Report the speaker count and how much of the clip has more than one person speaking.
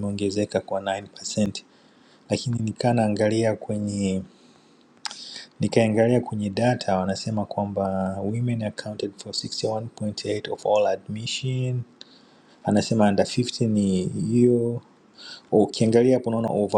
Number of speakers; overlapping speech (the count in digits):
1, no overlap